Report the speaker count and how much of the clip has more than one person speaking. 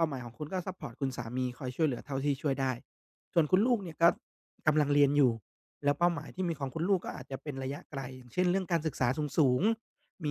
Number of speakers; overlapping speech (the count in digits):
1, no overlap